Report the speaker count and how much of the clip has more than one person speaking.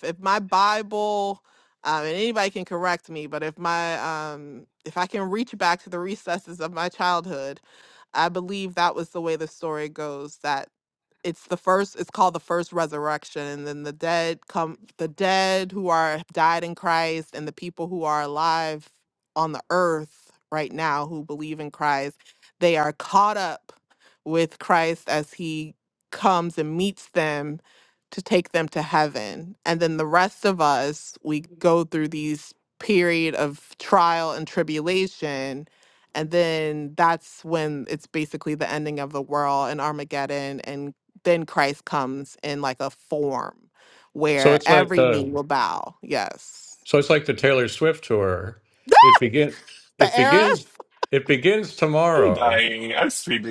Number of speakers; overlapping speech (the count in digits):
3, about 4%